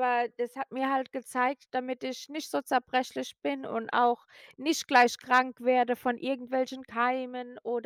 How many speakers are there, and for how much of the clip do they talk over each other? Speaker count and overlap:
1, no overlap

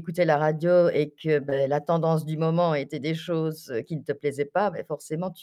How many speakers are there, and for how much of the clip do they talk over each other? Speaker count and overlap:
1, no overlap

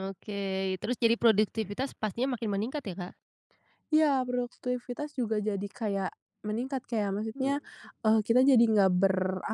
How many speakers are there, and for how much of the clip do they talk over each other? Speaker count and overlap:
2, about 3%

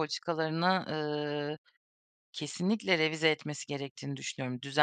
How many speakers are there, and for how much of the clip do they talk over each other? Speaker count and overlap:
1, no overlap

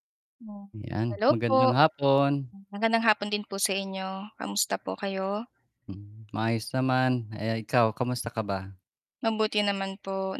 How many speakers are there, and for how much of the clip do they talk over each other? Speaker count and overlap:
2, about 6%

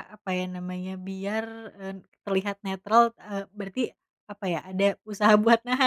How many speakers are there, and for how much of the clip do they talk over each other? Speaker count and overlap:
1, no overlap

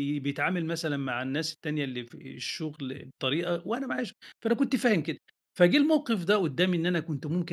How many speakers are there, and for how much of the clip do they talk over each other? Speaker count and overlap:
1, no overlap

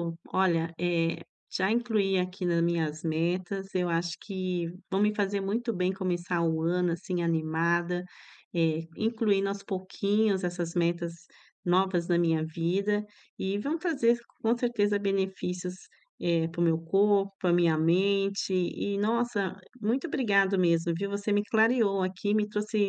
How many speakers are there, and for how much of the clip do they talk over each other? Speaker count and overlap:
1, no overlap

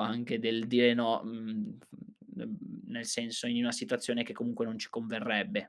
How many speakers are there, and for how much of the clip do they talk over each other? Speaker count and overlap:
1, no overlap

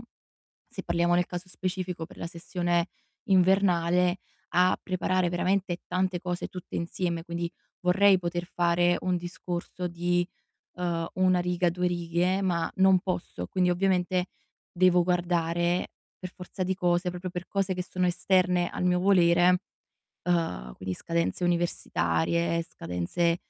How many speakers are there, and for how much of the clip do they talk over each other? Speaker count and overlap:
1, no overlap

